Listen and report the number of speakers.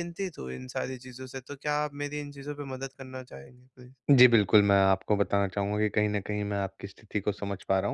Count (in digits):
2